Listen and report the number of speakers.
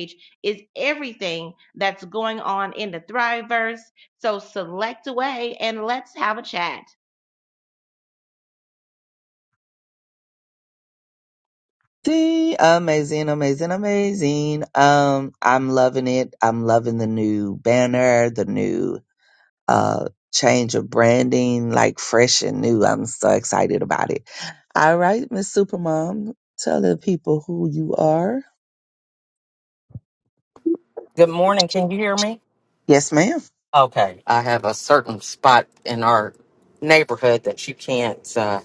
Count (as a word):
three